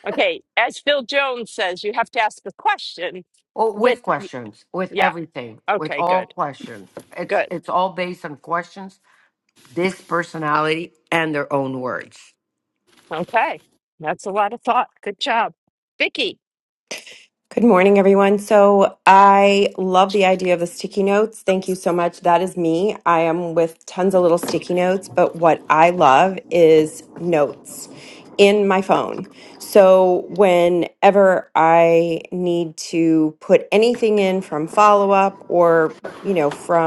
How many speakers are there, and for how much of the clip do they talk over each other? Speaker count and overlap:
three, about 4%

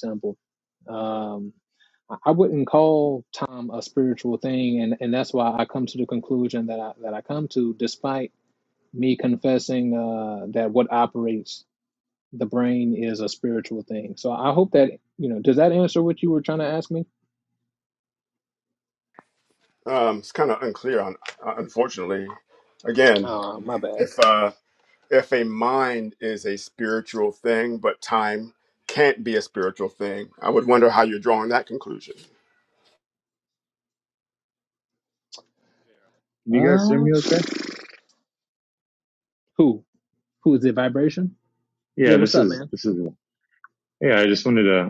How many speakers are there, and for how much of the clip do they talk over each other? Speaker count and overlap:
three, about 3%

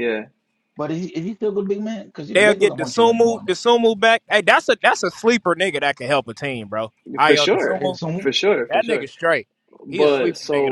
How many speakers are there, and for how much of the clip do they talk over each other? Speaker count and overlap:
three, about 30%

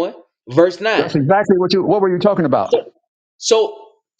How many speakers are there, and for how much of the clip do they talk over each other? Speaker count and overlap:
two, about 6%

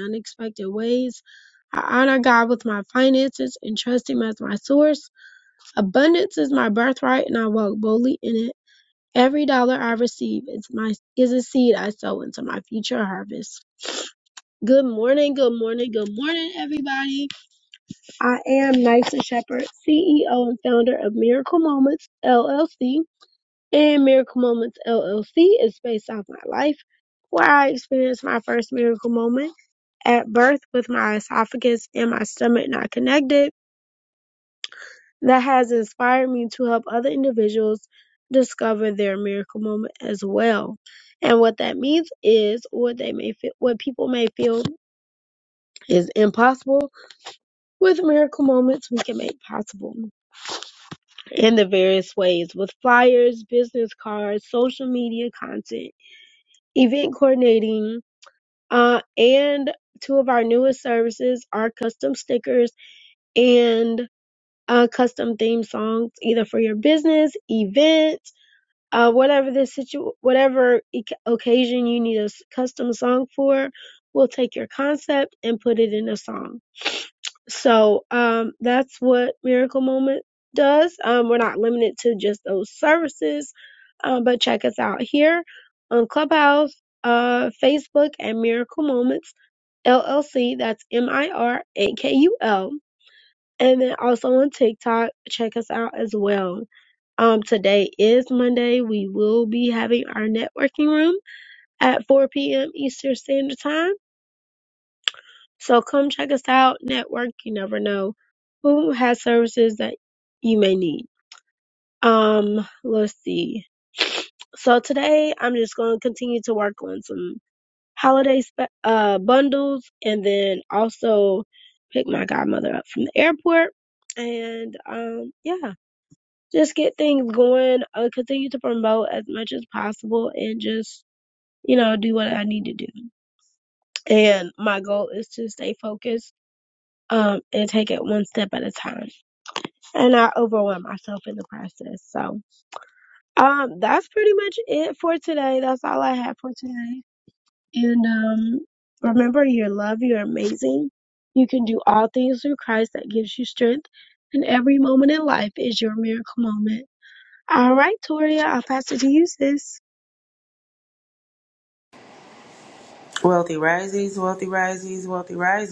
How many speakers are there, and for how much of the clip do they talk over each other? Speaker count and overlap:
two, no overlap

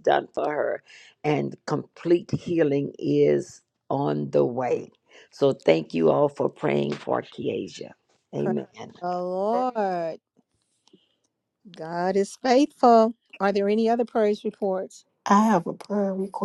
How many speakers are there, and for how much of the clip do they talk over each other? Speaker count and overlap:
three, about 1%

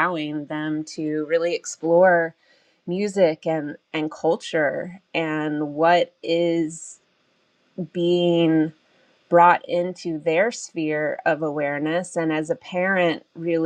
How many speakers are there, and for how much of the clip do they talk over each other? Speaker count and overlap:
one, no overlap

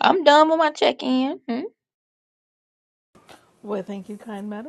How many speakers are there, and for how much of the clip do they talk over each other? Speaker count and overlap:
two, no overlap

